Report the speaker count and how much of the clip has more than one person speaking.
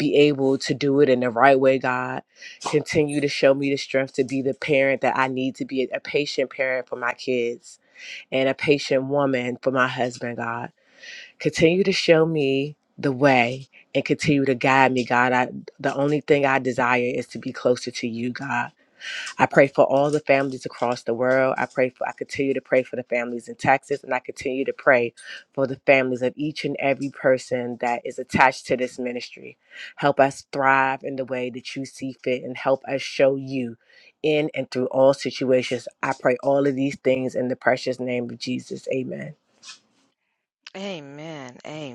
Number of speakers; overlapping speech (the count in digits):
2, no overlap